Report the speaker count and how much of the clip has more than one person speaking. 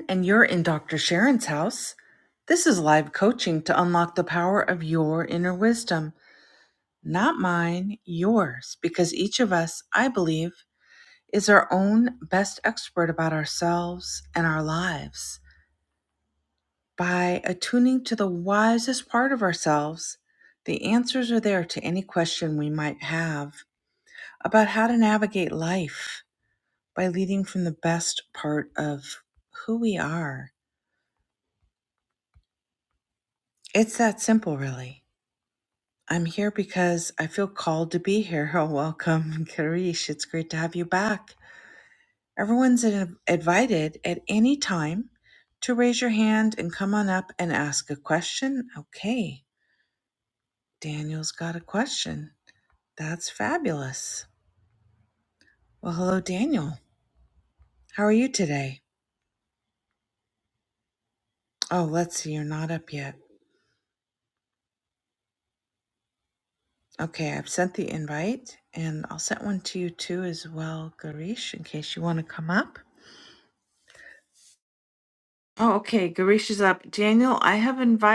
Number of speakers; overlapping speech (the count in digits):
1, no overlap